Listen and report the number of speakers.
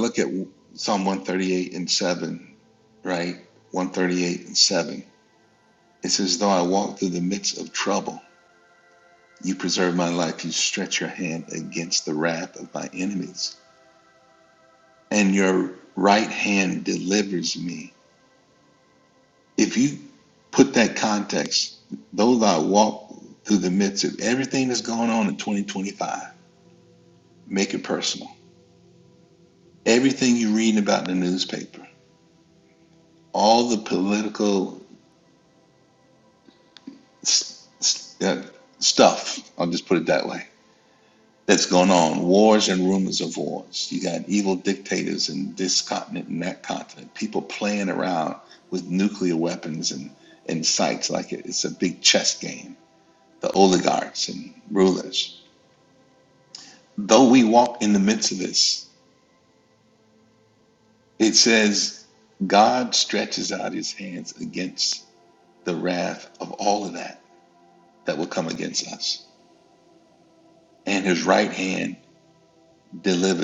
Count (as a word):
one